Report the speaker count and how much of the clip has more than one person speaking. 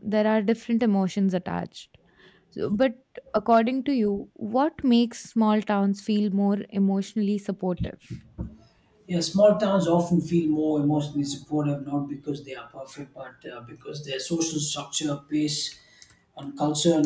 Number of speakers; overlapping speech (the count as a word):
two, no overlap